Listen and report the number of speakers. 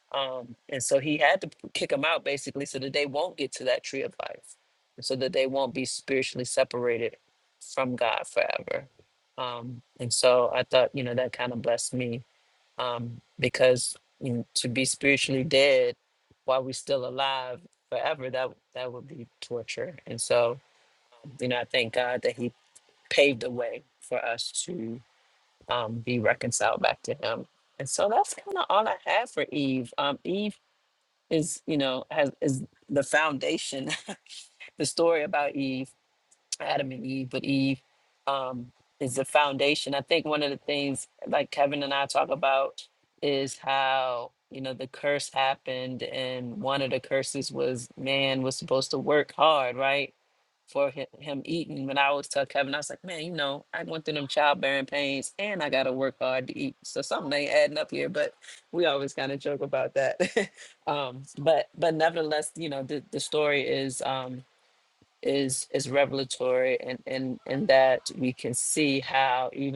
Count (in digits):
1